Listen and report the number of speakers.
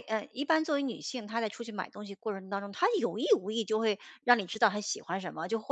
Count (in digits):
1